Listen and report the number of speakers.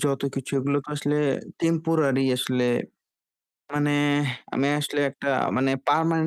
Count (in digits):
1